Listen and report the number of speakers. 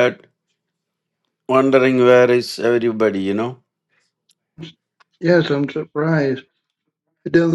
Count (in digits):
2